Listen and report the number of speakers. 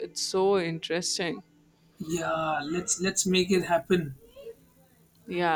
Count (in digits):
2